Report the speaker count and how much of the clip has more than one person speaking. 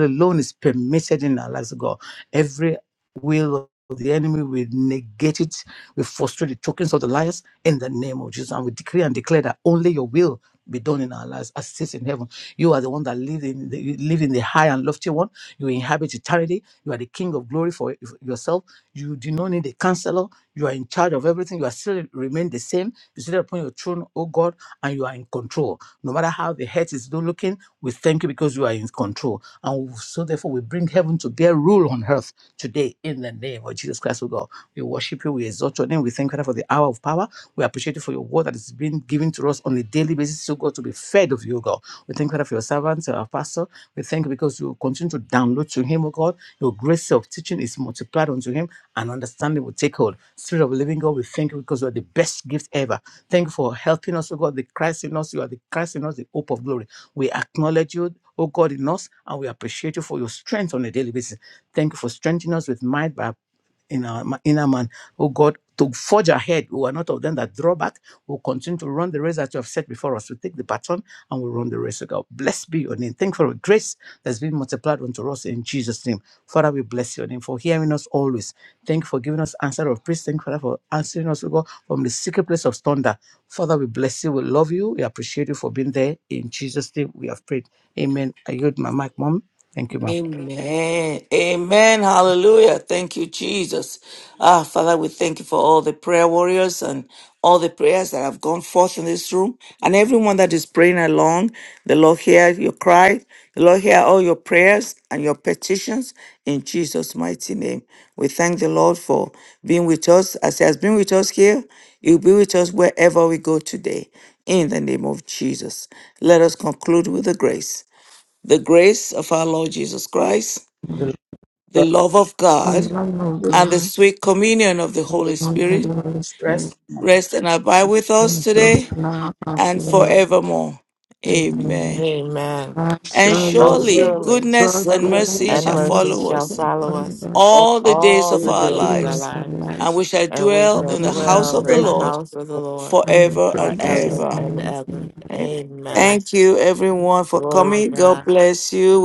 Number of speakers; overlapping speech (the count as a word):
four, about 10%